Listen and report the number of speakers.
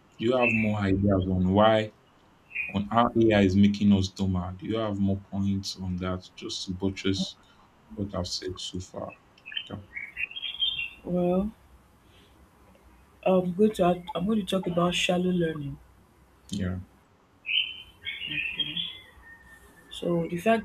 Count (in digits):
2